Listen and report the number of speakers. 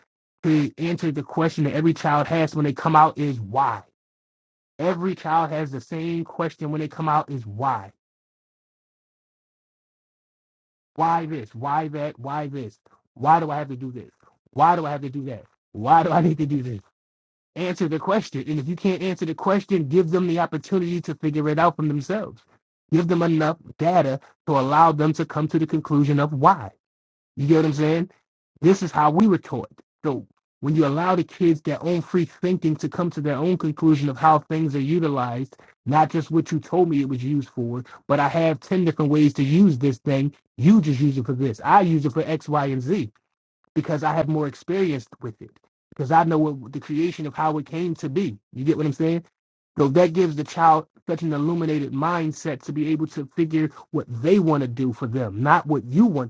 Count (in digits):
1